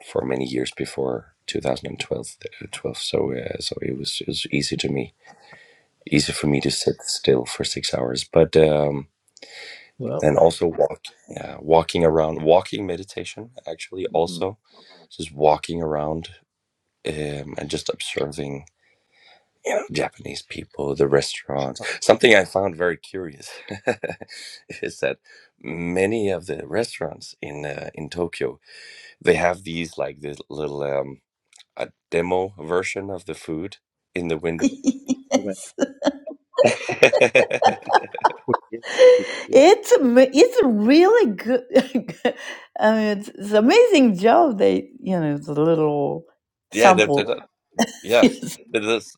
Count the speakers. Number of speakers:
3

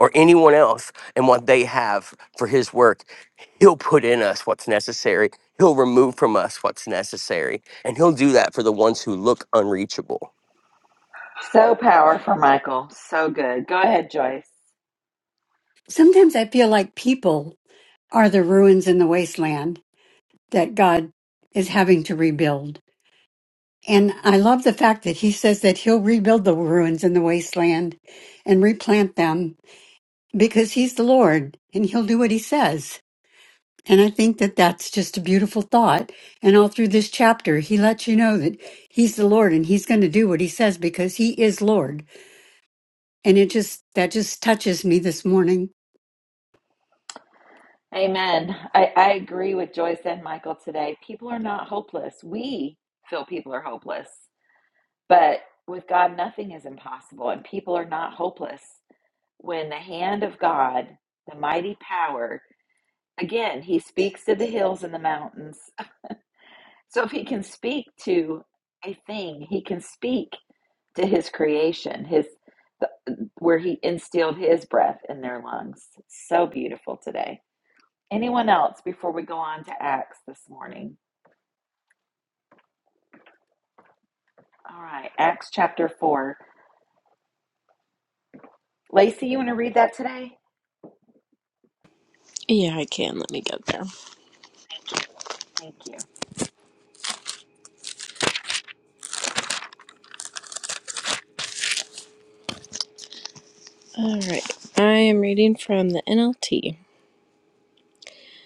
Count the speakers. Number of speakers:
4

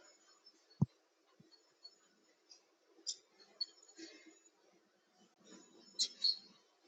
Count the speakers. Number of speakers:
0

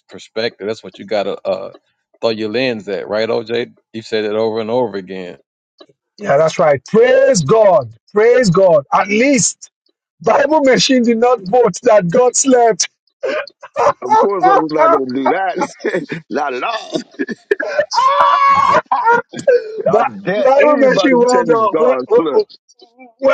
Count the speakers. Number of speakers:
3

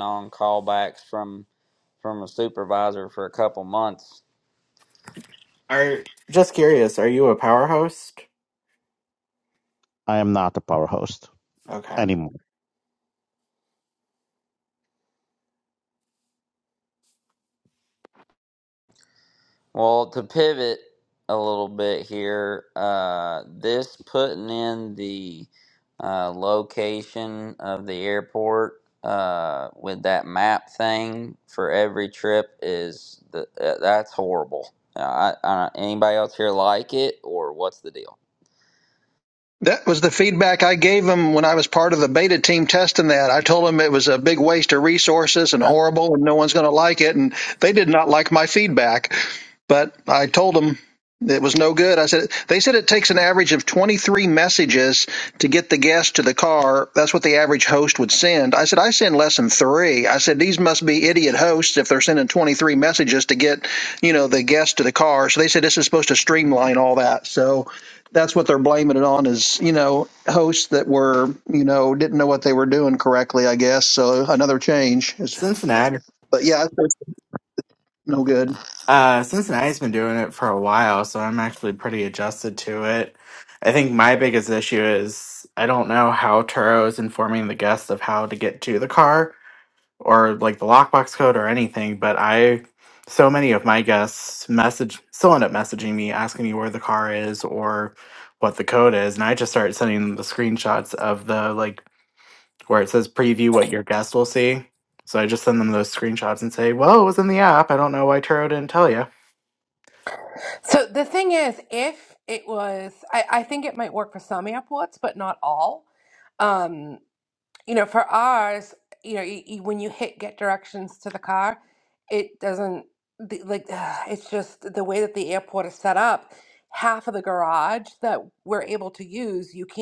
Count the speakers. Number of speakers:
5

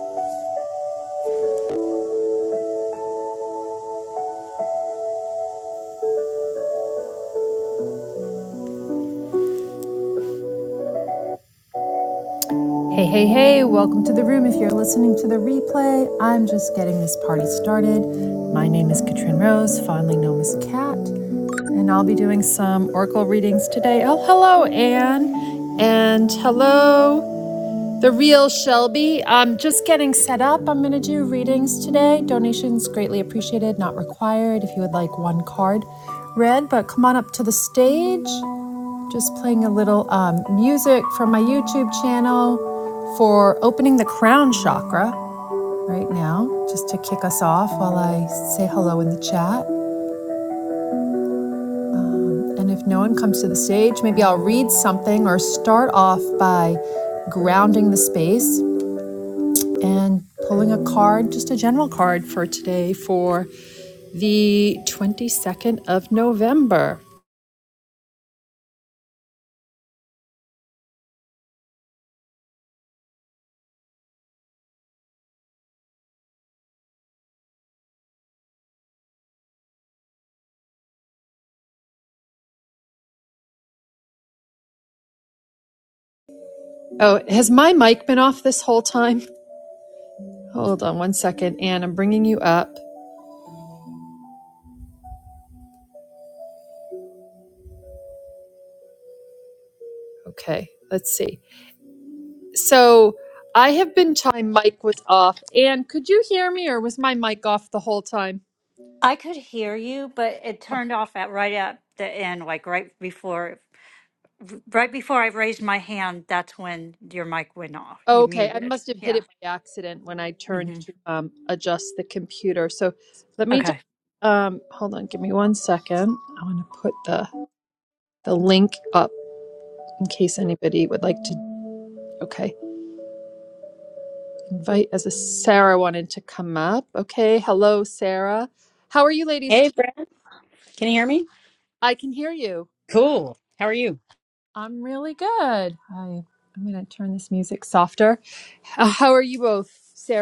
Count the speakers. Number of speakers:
3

